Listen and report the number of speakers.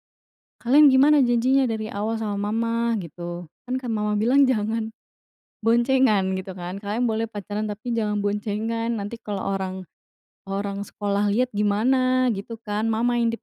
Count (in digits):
1